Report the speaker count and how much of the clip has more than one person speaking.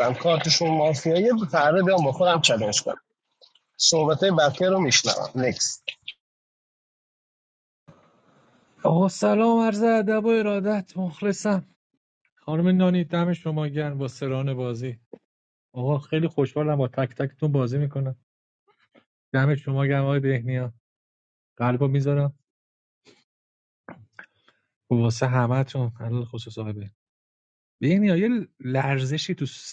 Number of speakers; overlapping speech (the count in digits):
2, no overlap